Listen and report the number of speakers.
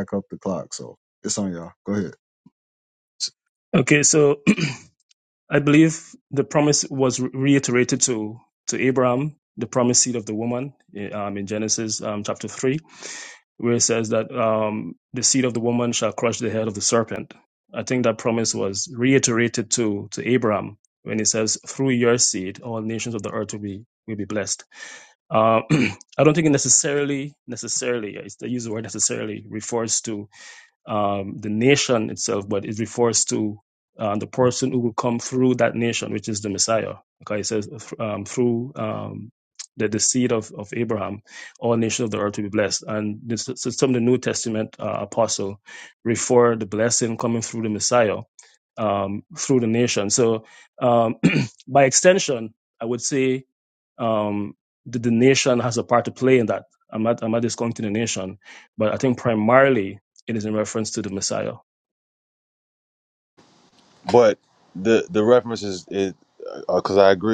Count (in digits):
3